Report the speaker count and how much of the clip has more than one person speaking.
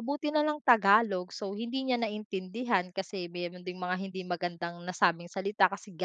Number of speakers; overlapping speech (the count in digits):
1, no overlap